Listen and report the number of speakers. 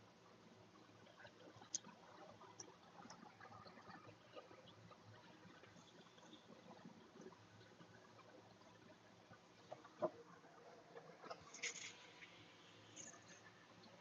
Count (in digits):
0